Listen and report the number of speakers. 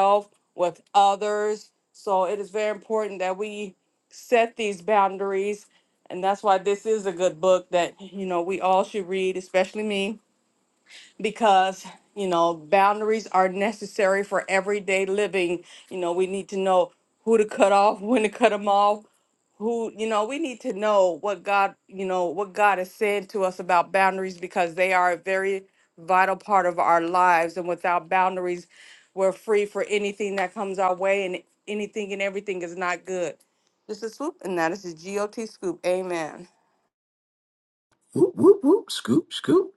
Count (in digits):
2